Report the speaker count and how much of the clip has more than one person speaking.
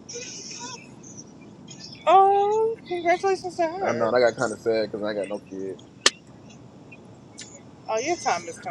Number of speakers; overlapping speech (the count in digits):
2, about 4%